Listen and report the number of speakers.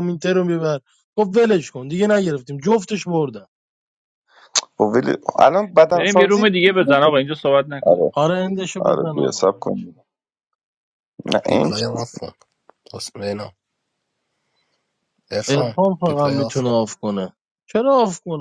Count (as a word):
four